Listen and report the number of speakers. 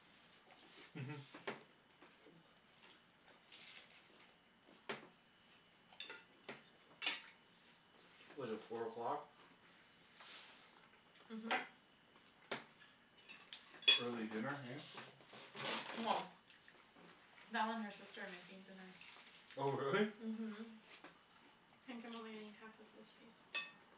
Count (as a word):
three